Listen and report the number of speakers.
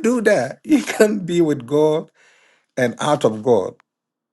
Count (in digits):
1